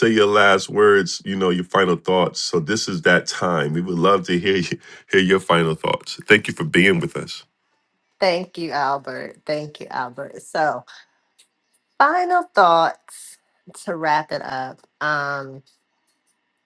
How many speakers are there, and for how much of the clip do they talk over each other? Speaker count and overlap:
two, no overlap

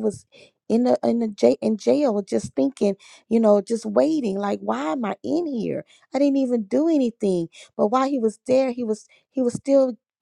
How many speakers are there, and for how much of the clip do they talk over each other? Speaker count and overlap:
one, no overlap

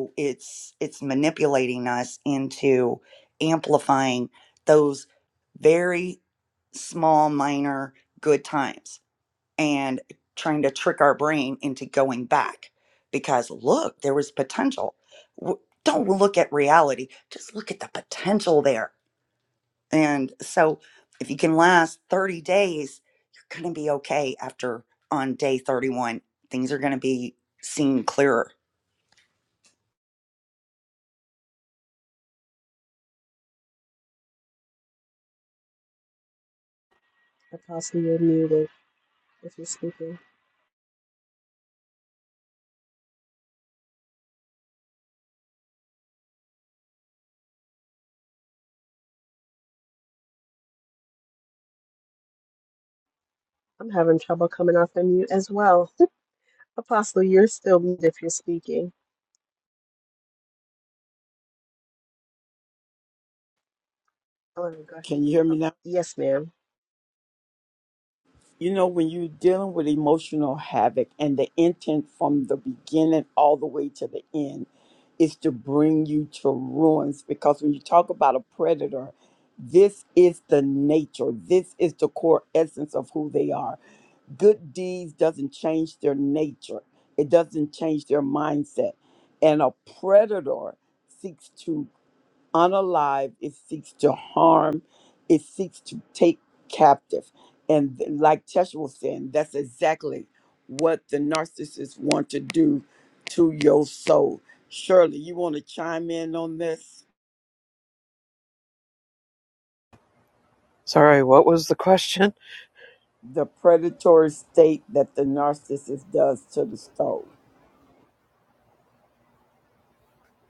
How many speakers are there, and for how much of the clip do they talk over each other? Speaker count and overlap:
four, no overlap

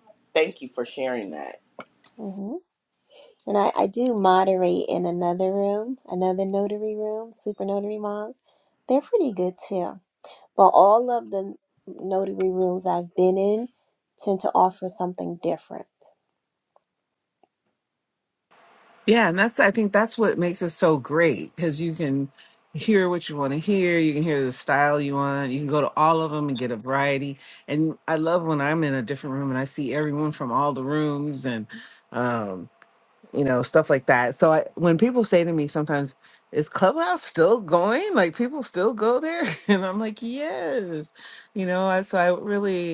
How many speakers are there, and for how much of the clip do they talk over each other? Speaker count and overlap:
three, no overlap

